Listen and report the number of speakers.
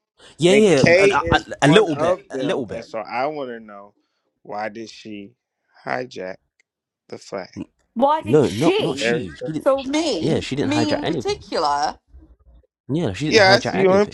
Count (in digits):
3